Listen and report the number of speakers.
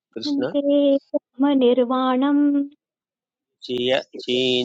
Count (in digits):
2